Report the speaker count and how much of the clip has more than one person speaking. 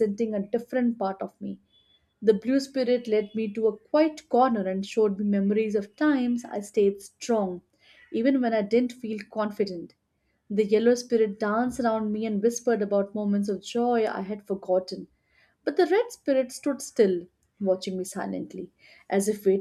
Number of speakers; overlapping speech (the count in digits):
1, no overlap